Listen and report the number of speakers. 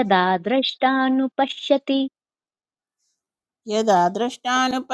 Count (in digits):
2